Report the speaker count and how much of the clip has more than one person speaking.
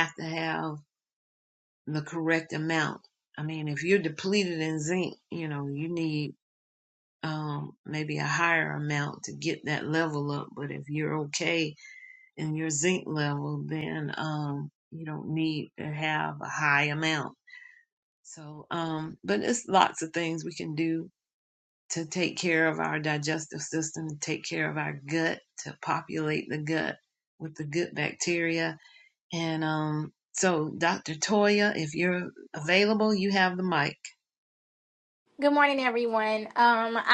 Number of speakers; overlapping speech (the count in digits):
2, no overlap